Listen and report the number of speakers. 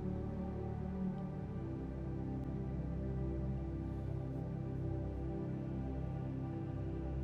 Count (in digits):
0